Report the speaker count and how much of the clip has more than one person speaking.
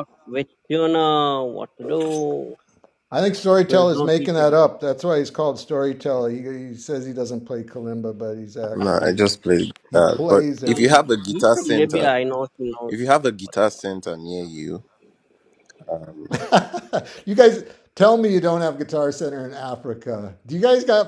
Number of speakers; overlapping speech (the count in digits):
3, about 16%